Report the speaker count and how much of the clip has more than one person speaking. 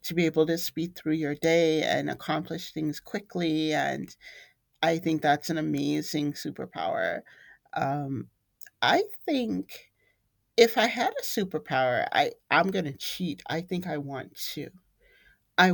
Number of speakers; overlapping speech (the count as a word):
one, no overlap